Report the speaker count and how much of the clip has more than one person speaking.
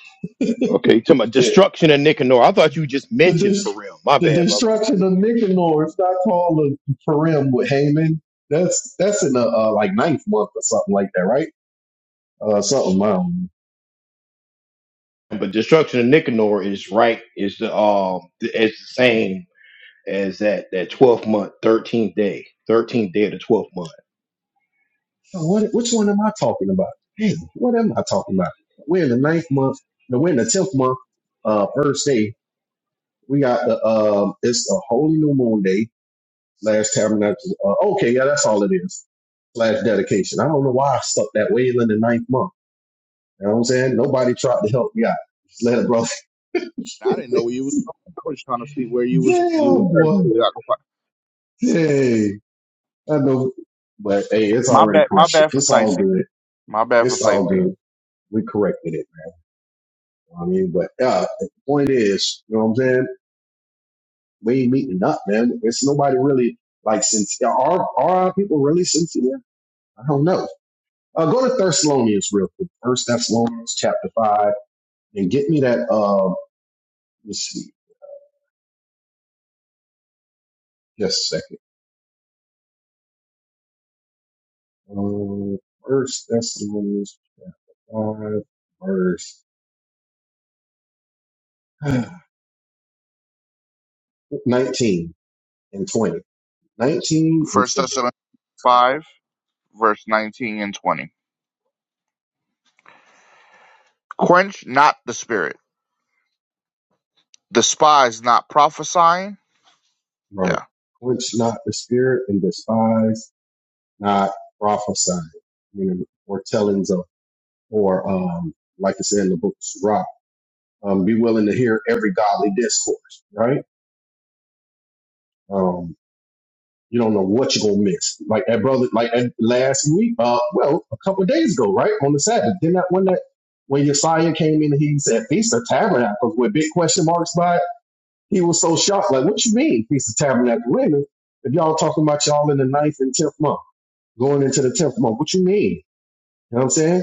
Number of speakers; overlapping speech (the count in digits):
3, about 3%